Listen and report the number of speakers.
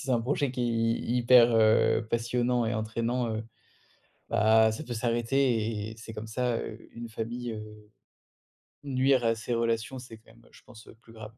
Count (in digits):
1